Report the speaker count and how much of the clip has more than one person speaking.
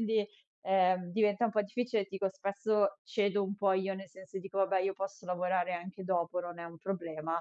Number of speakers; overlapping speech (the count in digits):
1, no overlap